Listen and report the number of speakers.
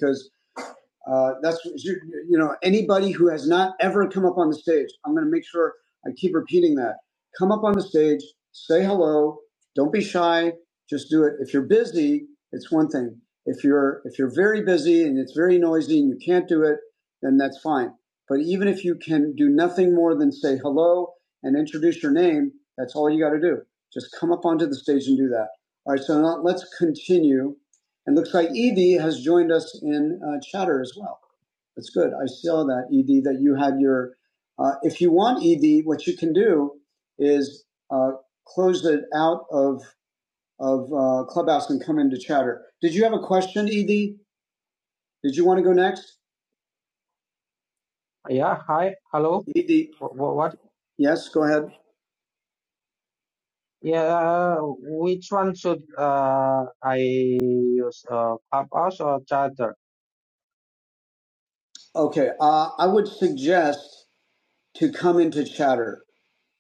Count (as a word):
two